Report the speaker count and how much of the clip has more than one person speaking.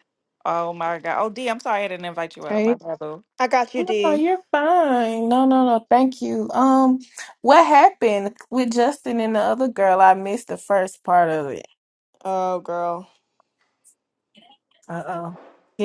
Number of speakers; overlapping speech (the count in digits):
3, about 5%